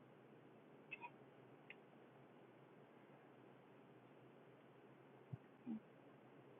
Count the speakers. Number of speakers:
zero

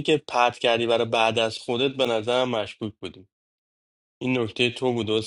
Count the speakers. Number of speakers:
one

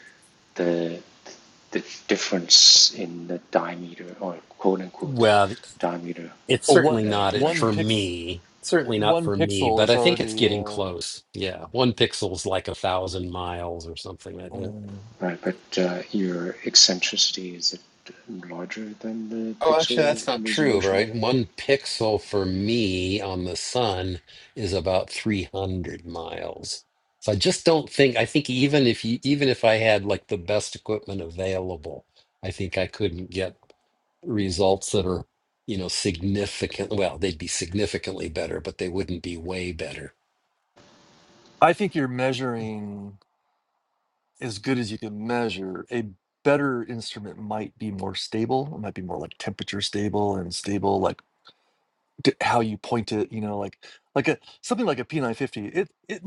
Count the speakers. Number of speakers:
three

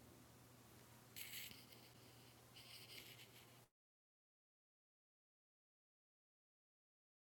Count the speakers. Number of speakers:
zero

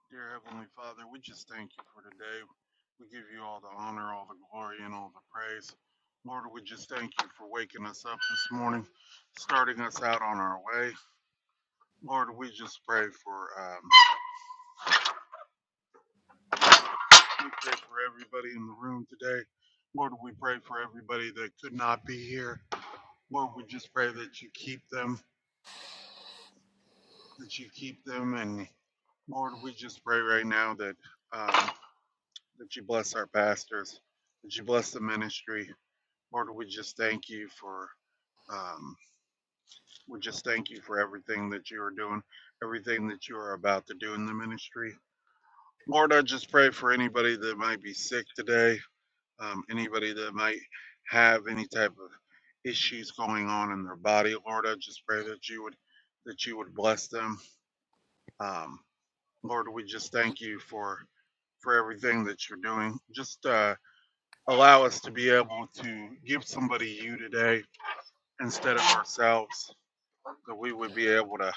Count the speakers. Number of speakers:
one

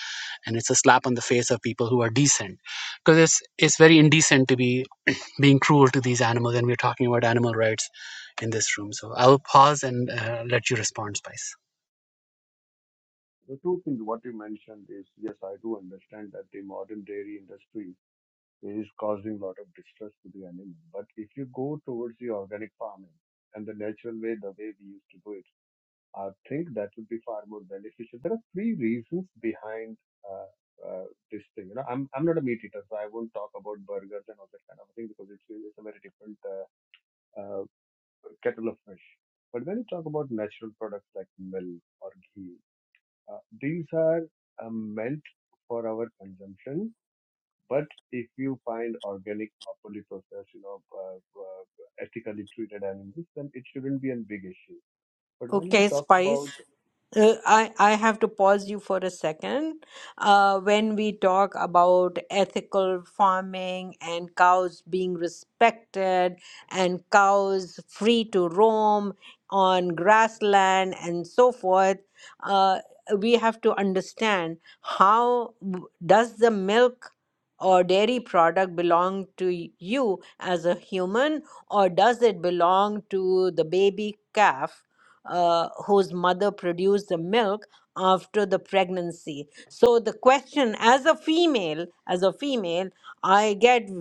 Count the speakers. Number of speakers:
three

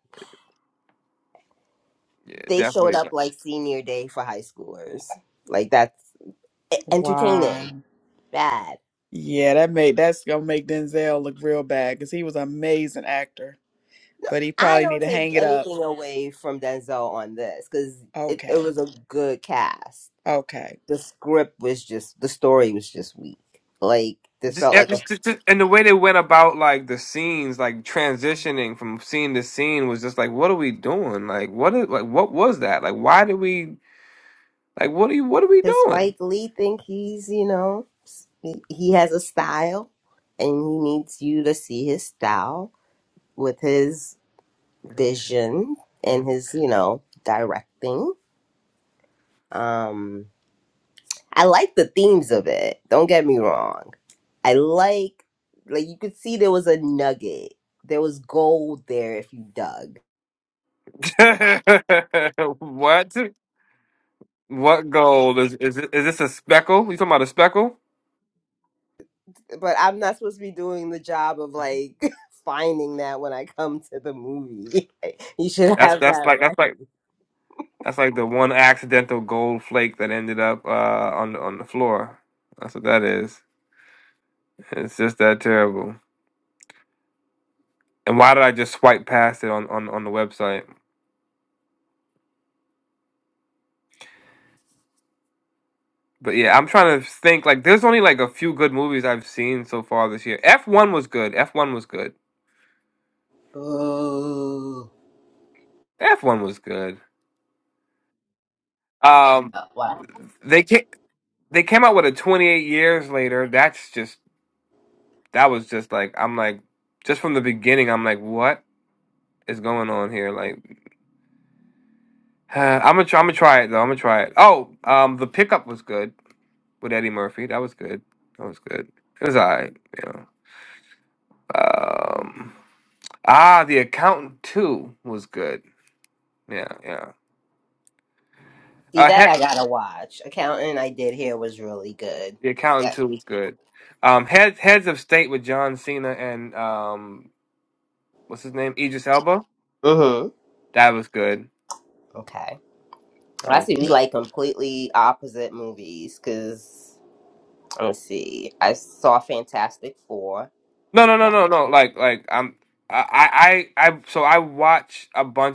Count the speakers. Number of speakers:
three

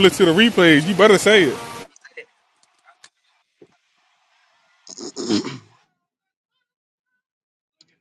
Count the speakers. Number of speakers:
one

